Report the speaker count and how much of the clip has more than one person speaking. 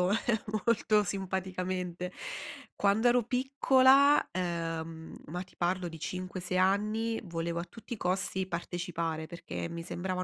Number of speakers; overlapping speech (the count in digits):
1, no overlap